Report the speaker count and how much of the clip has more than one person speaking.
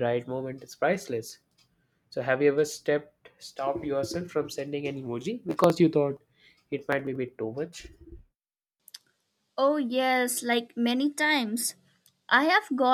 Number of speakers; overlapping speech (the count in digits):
2, no overlap